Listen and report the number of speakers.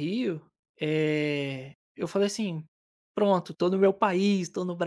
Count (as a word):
one